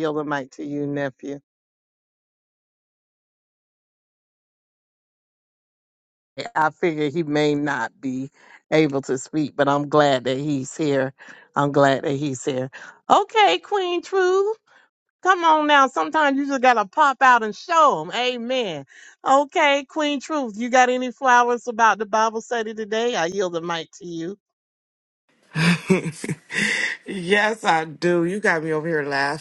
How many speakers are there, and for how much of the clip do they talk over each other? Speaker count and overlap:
two, no overlap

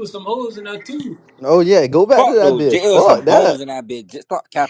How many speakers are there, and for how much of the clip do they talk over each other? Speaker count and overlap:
three, about 30%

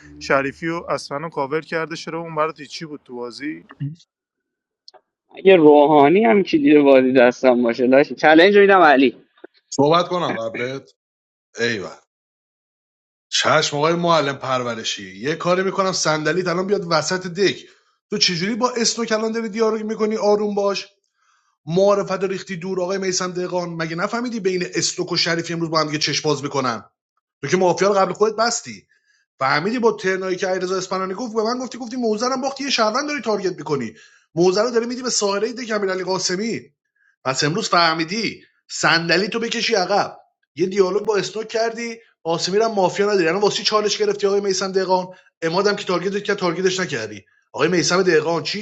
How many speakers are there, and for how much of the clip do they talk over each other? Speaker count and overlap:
three, no overlap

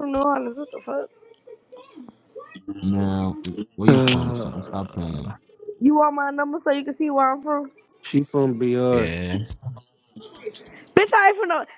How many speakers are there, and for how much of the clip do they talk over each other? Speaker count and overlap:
three, about 10%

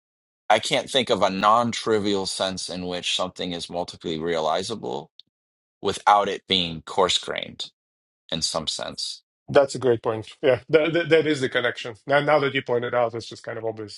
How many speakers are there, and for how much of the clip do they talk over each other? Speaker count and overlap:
two, no overlap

